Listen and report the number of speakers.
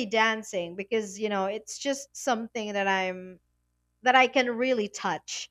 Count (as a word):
one